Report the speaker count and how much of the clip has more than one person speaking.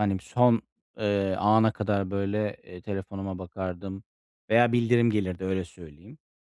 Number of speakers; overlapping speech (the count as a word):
one, no overlap